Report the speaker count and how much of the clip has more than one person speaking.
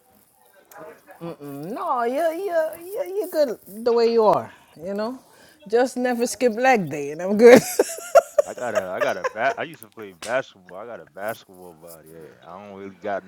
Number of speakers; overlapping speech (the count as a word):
two, no overlap